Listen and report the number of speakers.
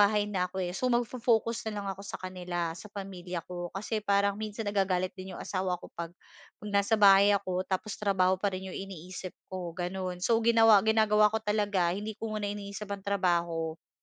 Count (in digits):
1